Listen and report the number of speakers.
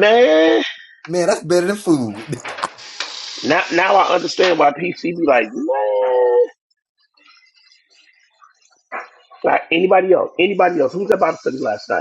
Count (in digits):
2